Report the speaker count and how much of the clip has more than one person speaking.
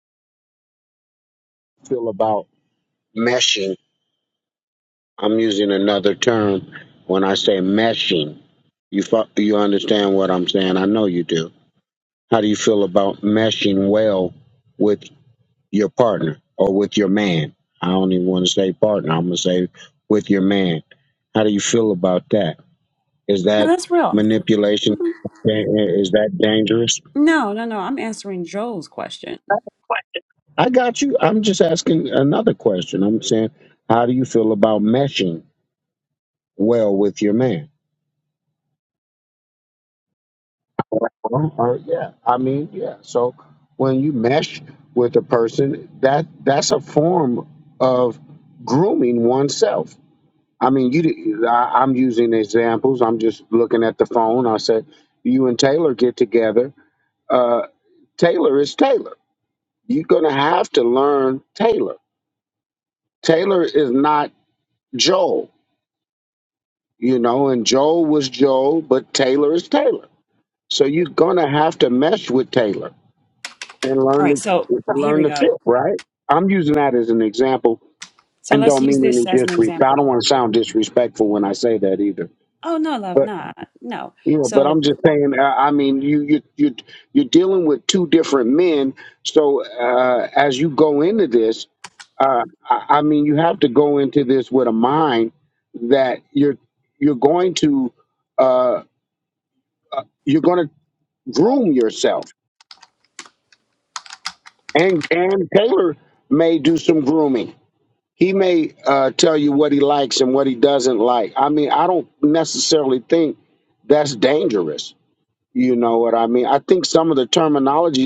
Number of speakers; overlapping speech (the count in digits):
2, about 3%